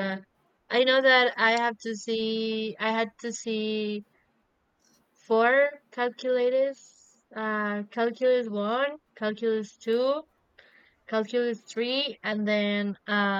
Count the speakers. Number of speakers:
one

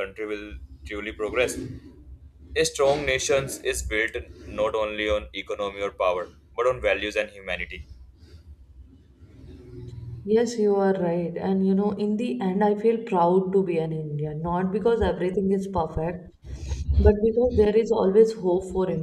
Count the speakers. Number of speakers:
two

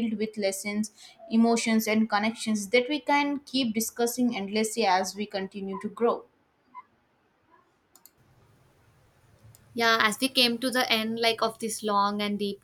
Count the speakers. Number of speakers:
two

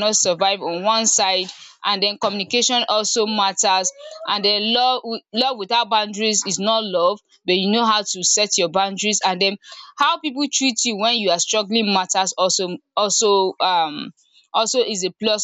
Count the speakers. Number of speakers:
one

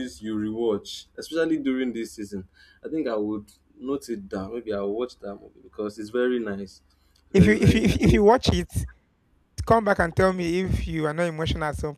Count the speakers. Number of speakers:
two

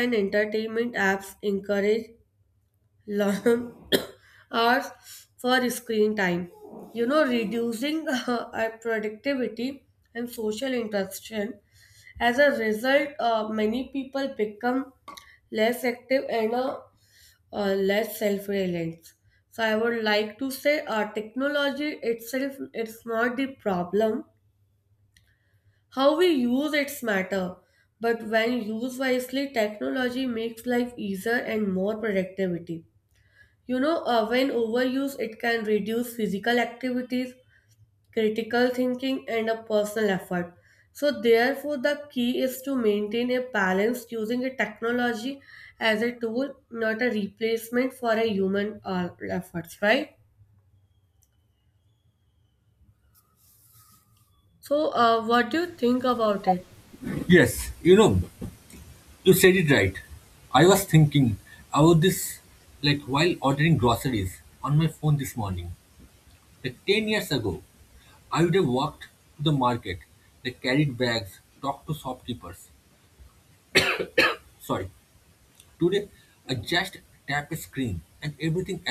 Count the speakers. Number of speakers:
two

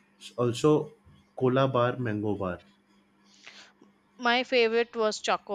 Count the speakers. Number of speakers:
two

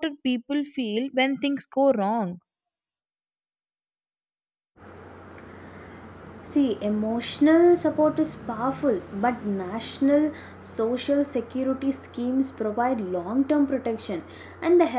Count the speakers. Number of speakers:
two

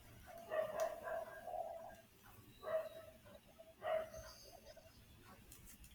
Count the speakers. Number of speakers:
zero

